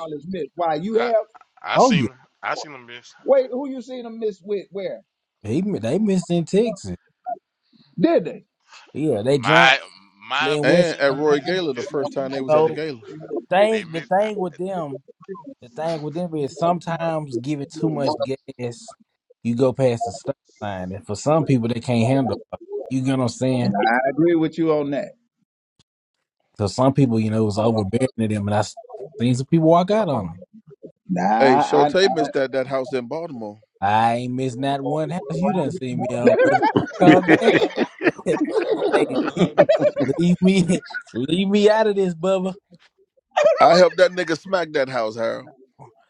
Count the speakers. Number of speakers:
4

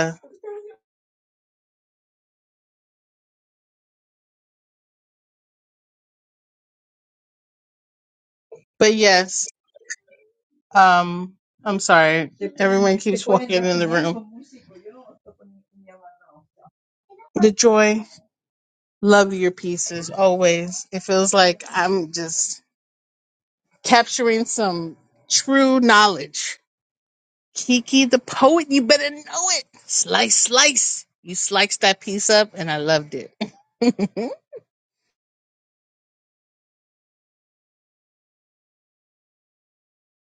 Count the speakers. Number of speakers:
1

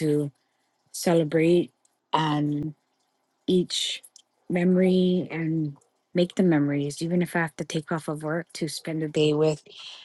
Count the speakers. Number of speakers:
1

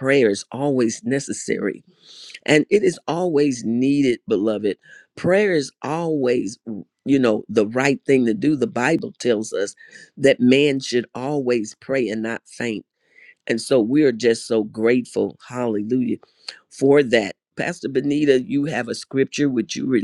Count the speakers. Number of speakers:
1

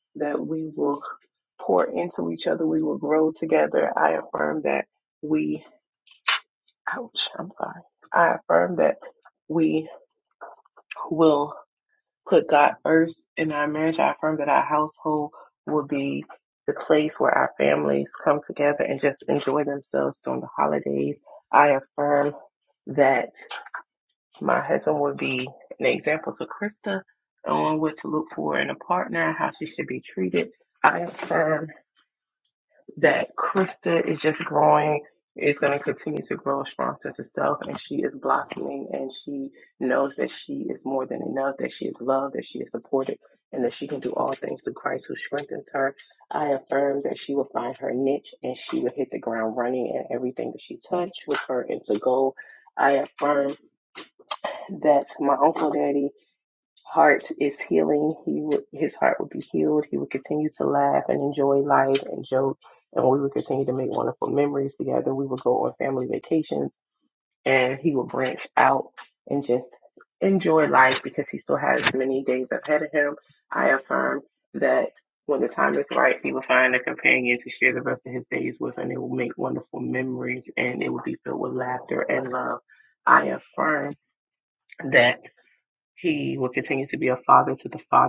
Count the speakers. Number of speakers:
1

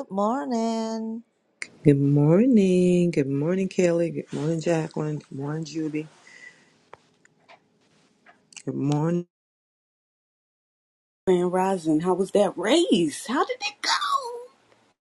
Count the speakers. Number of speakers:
3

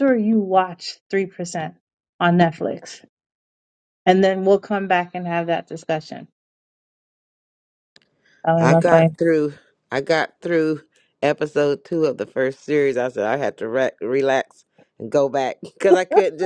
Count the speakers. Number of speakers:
2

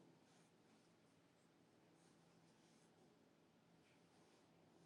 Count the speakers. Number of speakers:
0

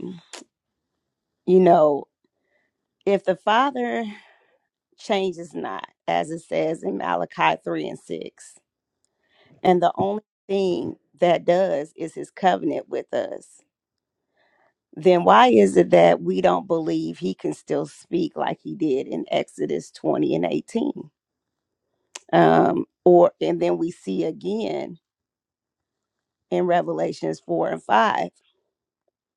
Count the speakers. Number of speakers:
1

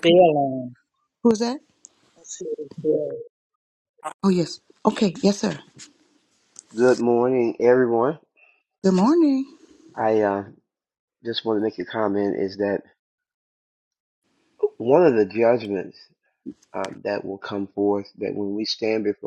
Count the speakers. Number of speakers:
3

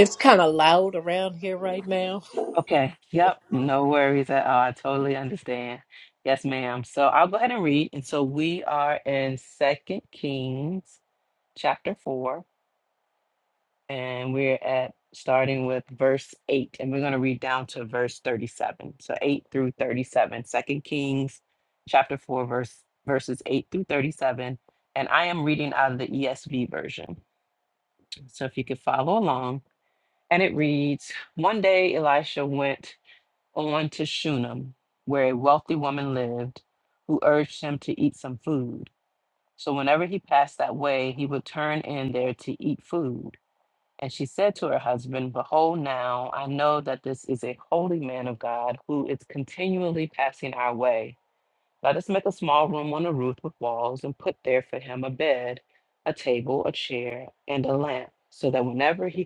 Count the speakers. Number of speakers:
2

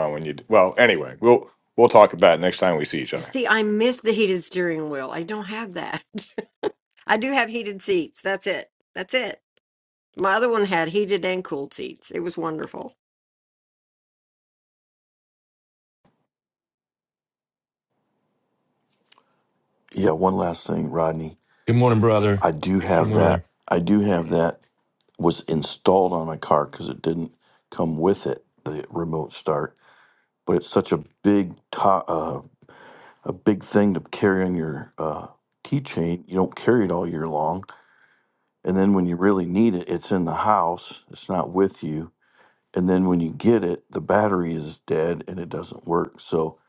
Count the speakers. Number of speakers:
4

